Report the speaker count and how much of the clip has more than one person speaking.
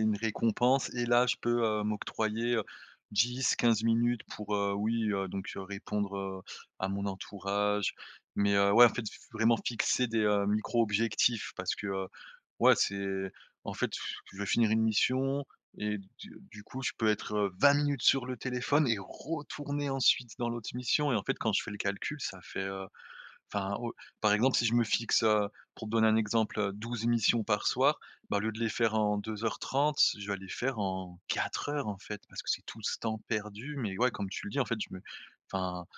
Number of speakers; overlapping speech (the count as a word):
one, no overlap